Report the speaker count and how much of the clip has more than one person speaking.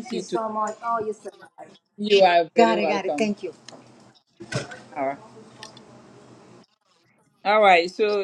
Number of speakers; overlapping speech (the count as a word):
two, about 13%